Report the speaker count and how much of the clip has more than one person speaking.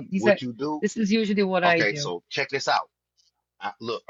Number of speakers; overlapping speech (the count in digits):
2, about 17%